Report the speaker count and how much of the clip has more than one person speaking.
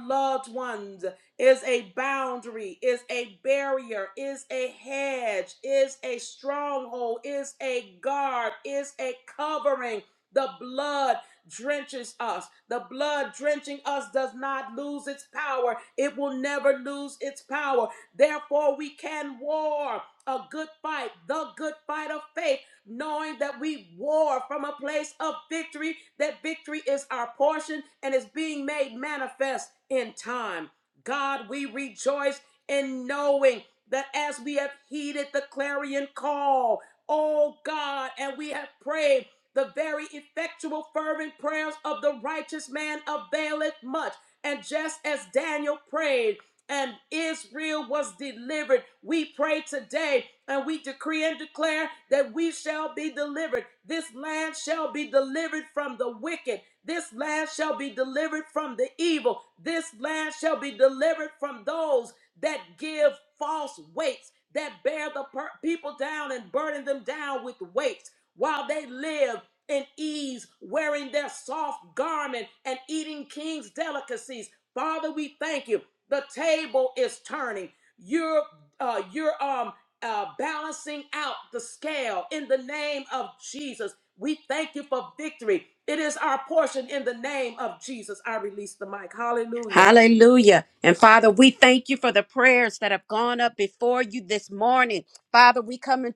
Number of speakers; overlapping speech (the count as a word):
two, under 1%